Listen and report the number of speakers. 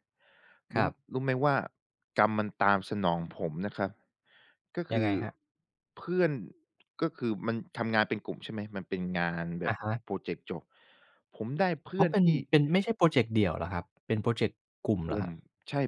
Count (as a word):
two